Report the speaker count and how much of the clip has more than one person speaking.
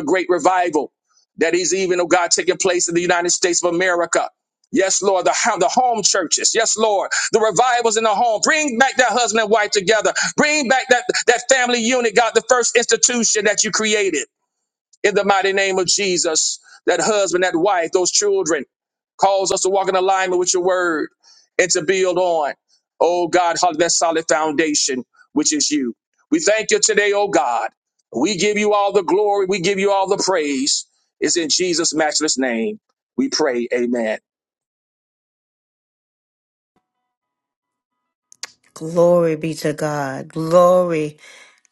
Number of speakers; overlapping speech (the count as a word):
two, no overlap